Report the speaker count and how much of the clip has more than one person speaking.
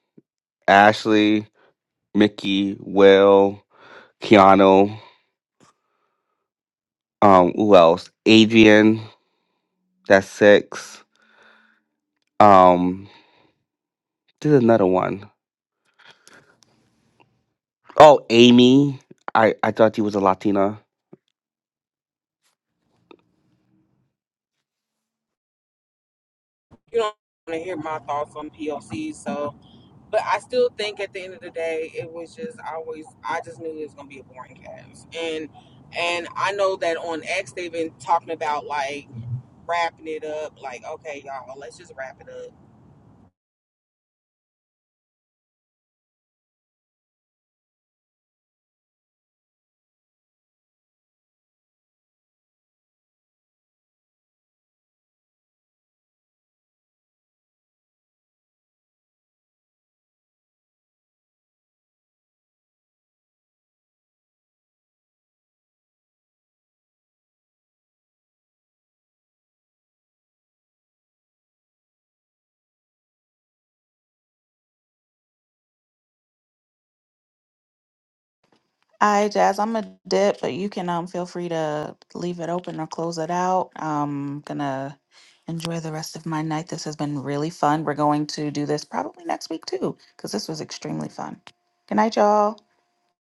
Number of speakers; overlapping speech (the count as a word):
three, no overlap